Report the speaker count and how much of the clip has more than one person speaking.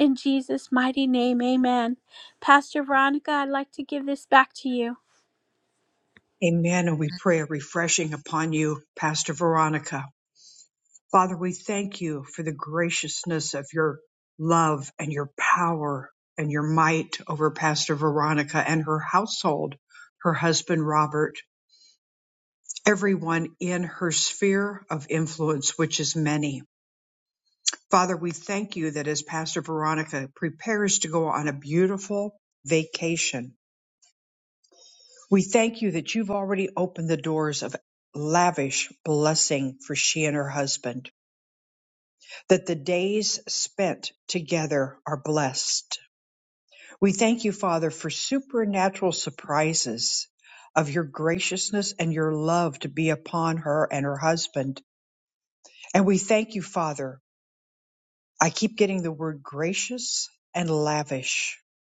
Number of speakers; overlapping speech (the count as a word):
two, no overlap